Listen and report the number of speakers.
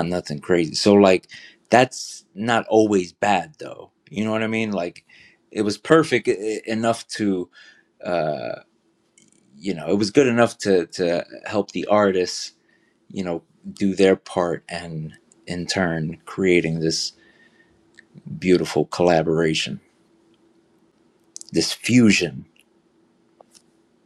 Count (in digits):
1